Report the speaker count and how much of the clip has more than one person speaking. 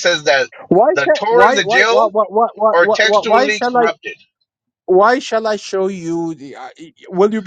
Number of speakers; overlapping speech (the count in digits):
2, about 31%